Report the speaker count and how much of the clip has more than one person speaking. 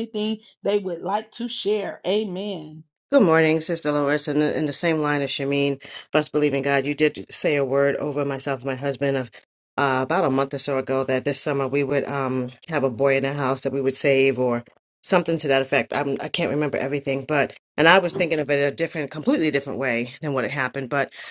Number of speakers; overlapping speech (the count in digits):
2, no overlap